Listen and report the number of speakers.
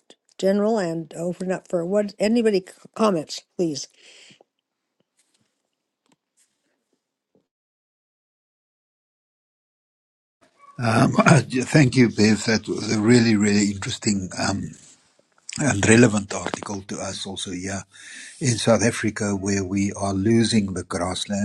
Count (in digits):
2